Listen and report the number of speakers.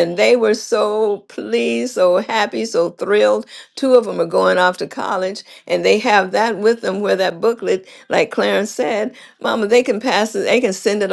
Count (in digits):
1